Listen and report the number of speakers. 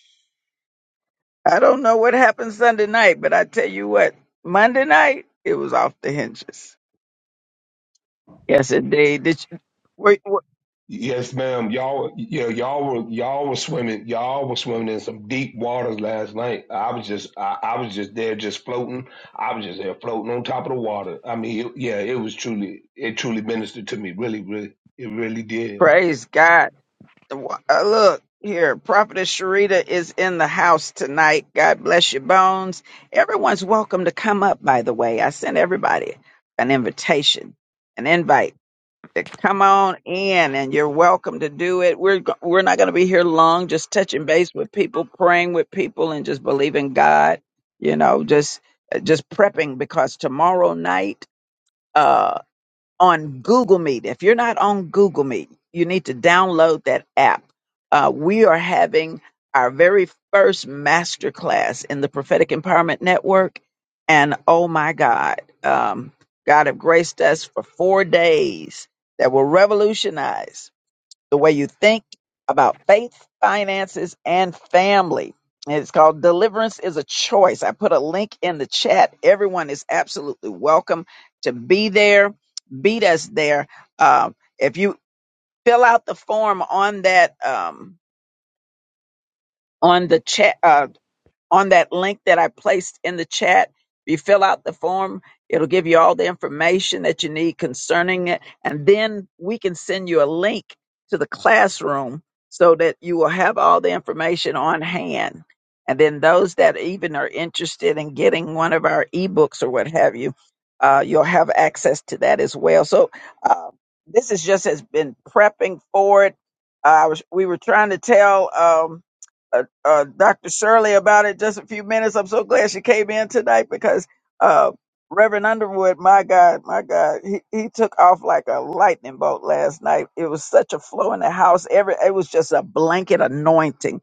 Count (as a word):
two